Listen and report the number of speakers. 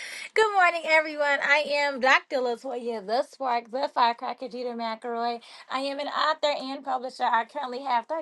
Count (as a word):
one